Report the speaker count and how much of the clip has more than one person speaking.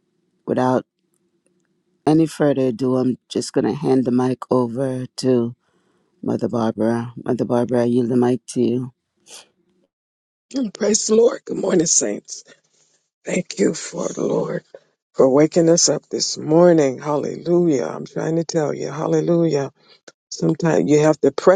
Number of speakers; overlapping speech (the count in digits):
2, no overlap